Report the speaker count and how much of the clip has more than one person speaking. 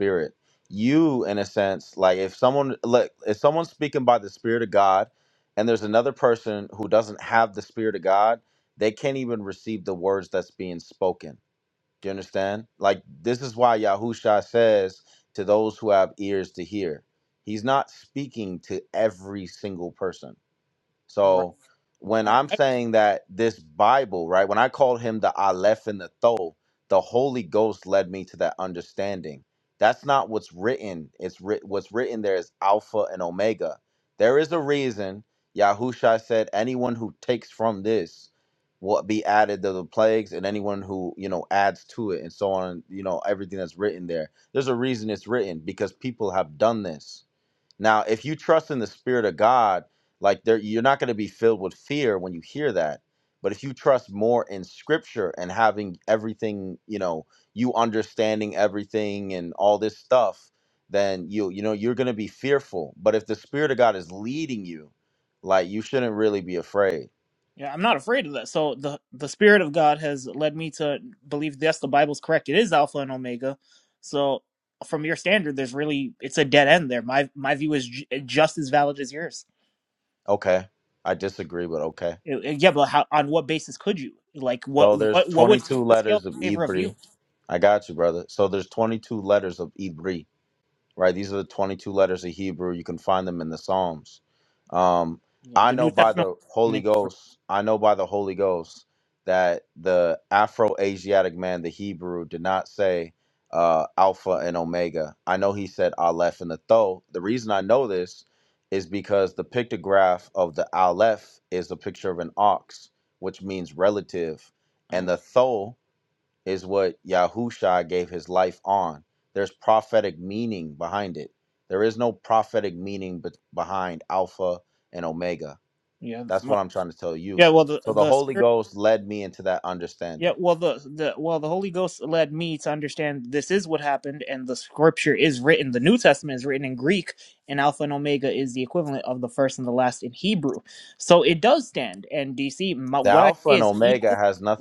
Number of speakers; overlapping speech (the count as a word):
two, about 4%